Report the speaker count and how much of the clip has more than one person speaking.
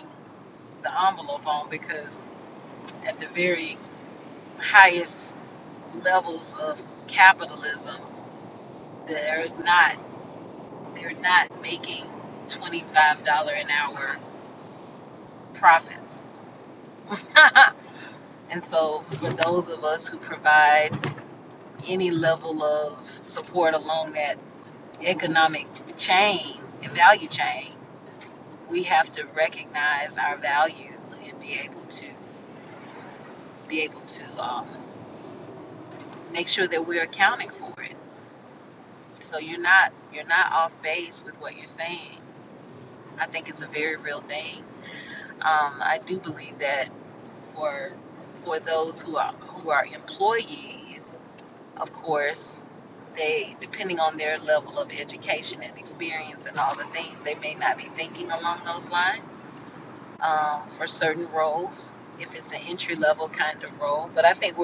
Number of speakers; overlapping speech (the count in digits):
1, no overlap